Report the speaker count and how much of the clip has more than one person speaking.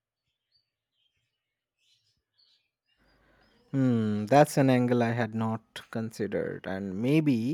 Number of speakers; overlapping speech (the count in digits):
1, no overlap